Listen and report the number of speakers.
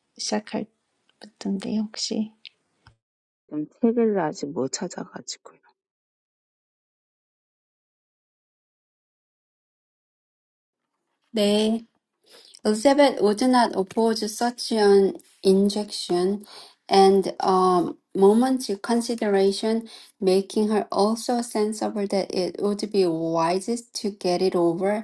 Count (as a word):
three